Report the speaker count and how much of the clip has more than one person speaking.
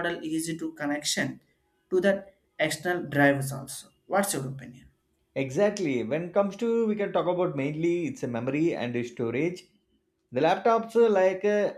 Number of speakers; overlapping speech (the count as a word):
two, no overlap